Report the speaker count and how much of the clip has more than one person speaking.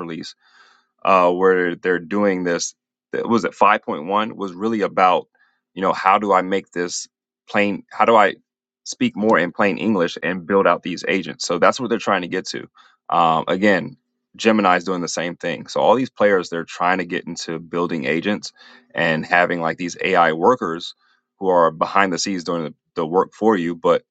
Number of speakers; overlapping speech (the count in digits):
1, no overlap